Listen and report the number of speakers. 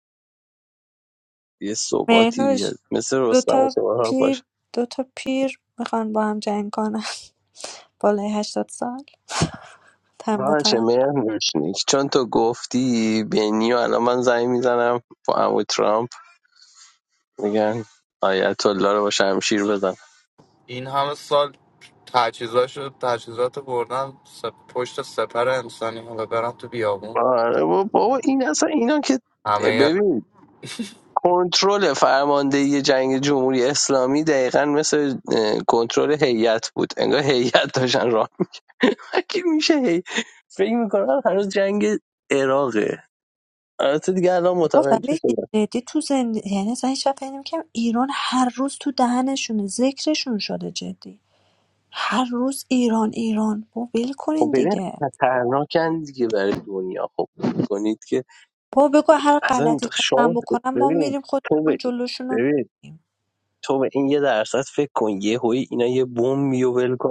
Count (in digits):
3